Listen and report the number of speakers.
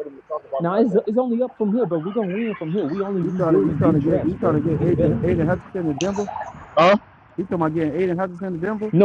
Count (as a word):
three